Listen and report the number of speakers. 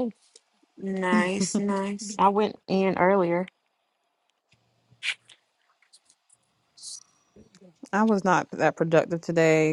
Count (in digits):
3